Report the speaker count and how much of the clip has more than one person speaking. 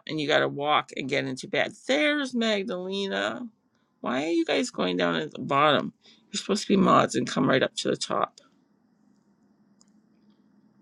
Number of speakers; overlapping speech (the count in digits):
1, no overlap